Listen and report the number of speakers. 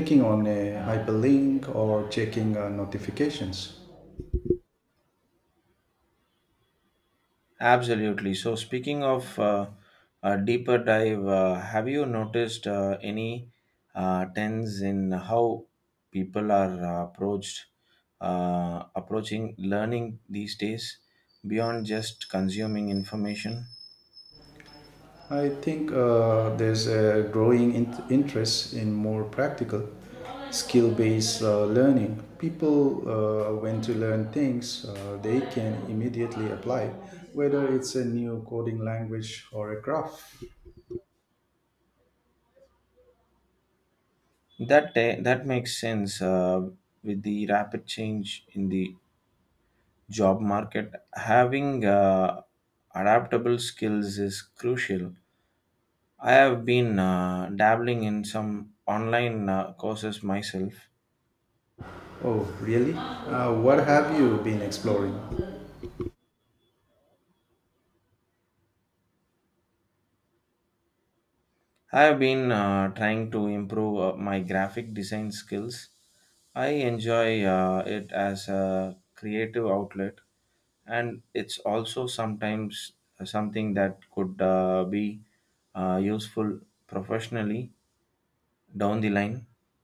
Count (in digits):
2